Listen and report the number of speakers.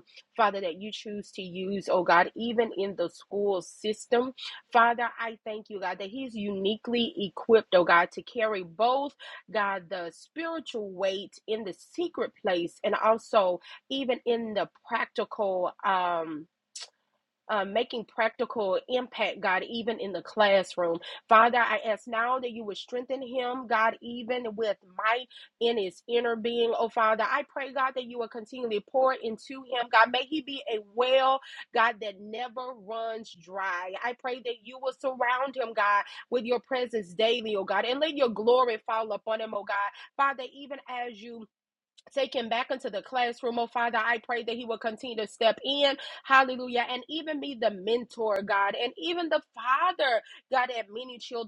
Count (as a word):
one